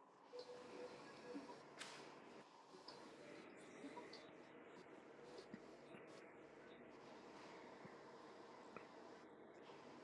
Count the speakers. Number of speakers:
0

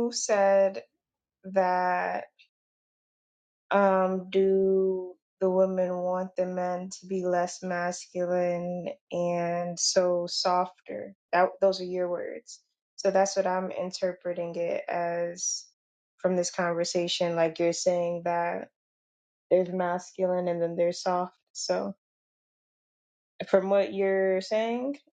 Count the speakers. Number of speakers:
1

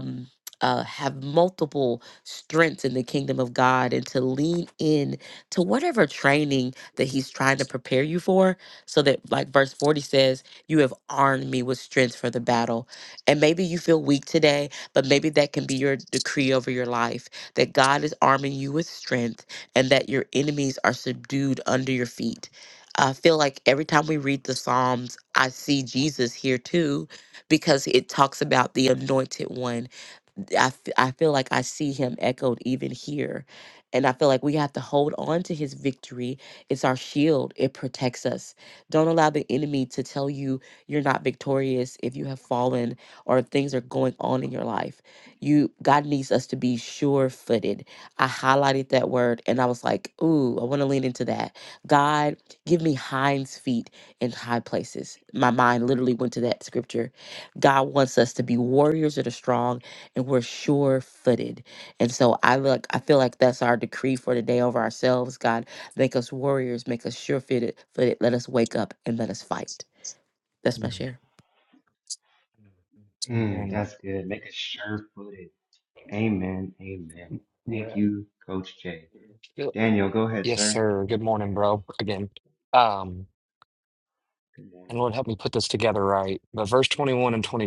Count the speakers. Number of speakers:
3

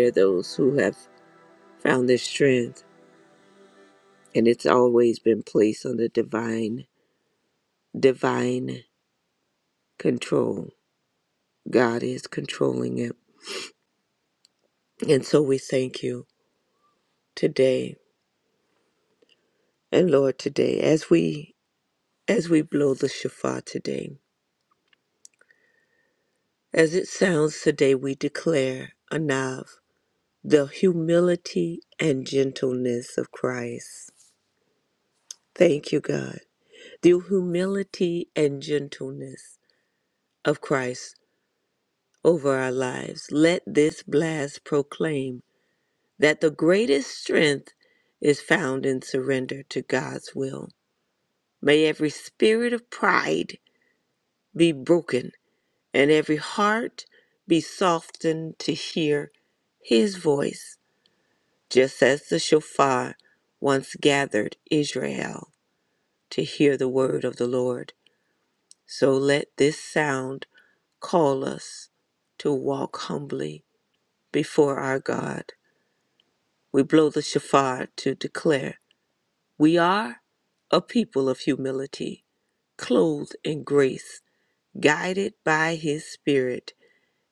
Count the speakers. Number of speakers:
1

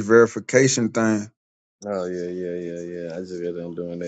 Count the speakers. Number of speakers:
2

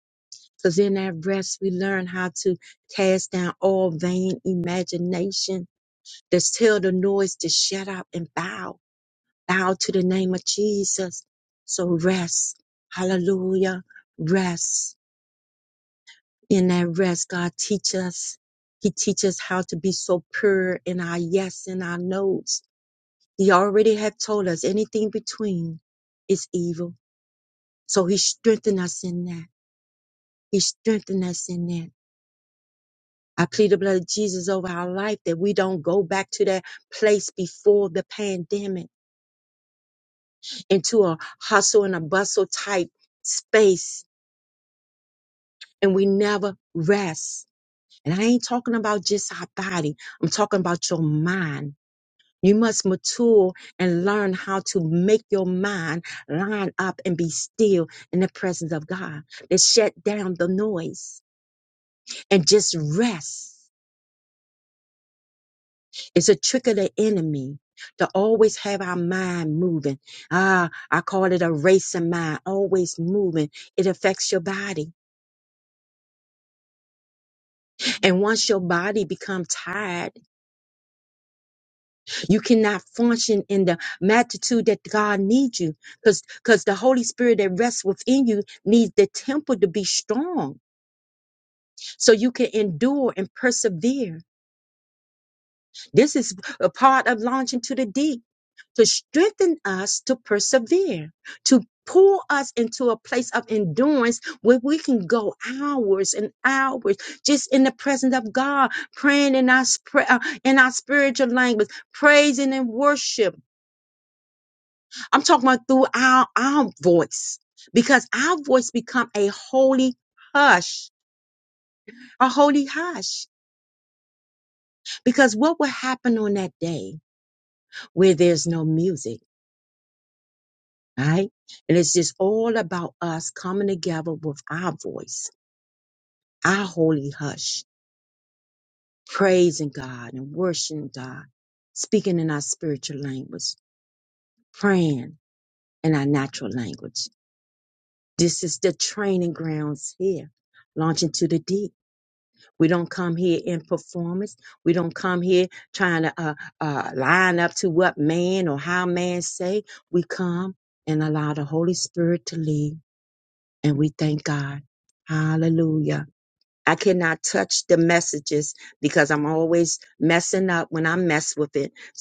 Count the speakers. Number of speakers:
1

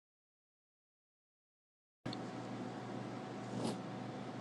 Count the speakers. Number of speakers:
0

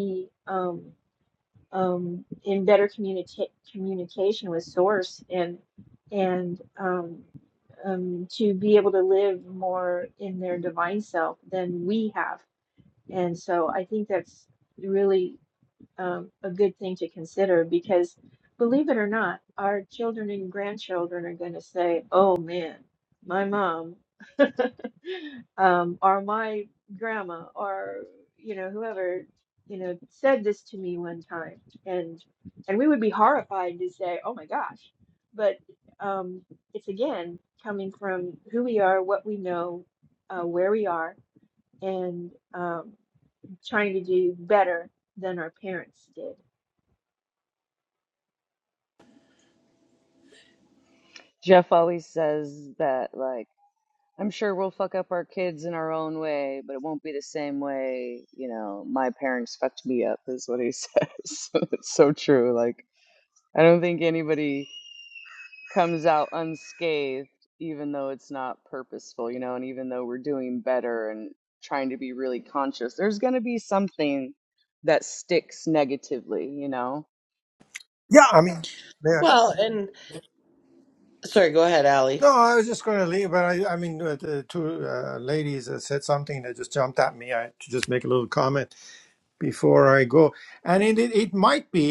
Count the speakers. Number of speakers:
4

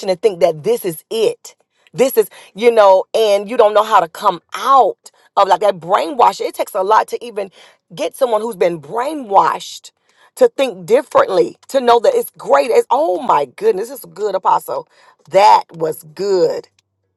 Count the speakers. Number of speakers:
1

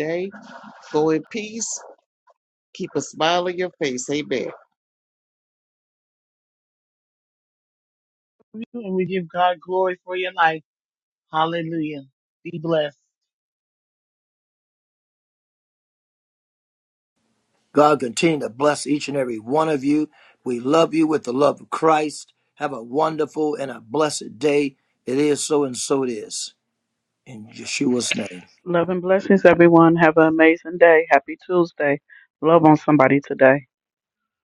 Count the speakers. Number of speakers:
4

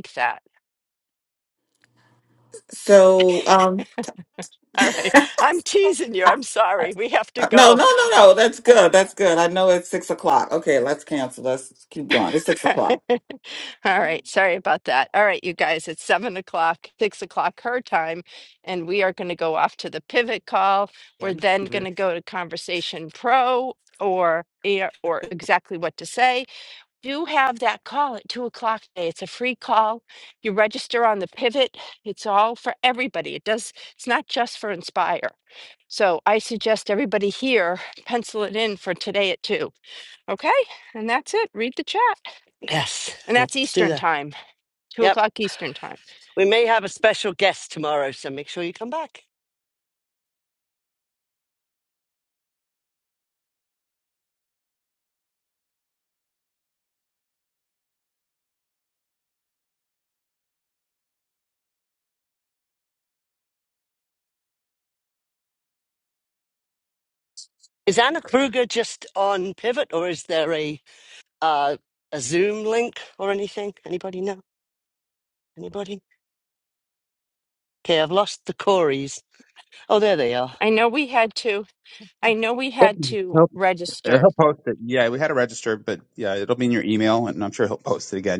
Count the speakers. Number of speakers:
4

